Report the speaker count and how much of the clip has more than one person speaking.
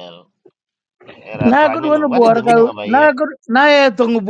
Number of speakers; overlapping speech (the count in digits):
2, about 41%